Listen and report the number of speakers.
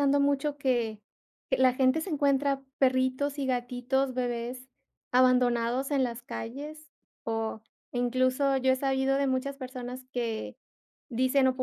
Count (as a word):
one